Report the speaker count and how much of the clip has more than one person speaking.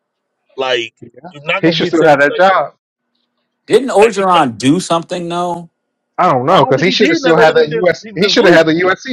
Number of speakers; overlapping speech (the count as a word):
three, about 38%